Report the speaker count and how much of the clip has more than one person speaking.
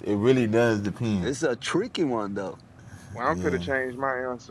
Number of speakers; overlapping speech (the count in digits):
3, about 10%